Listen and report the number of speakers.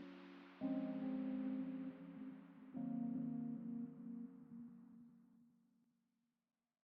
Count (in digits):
0